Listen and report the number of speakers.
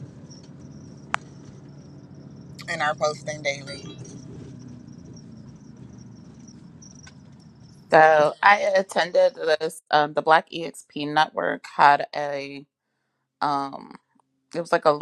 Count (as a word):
two